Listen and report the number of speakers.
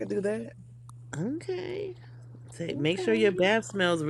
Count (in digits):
2